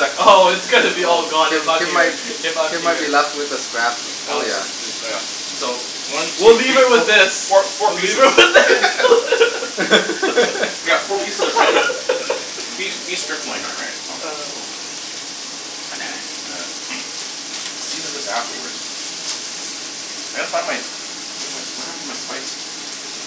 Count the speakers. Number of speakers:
three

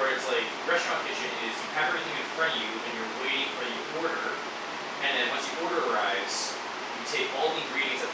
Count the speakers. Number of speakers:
one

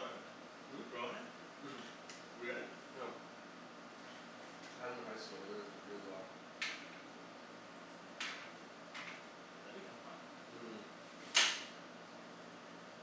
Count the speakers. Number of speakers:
two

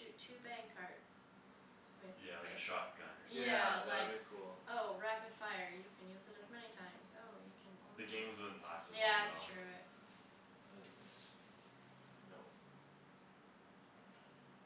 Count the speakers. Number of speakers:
three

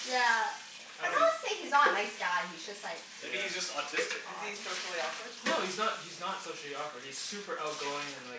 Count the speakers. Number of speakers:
four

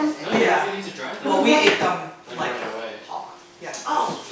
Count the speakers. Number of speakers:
three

